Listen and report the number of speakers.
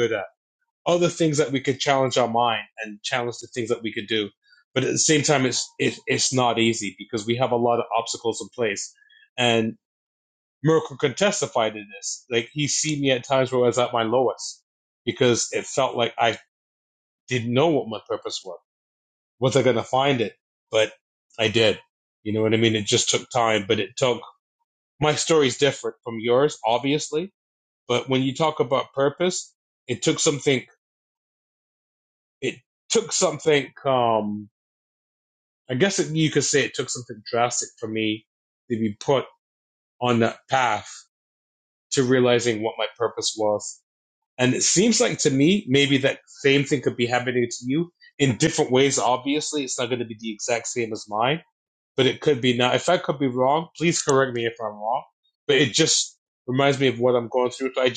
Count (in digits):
1